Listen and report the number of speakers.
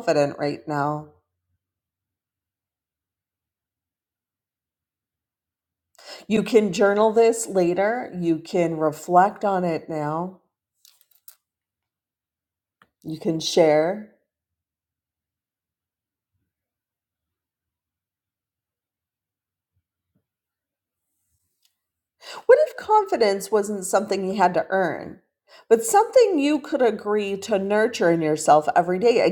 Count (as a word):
one